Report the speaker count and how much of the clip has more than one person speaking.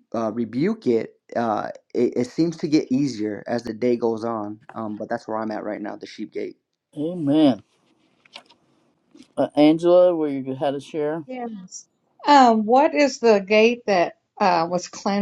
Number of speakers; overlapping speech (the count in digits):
3, no overlap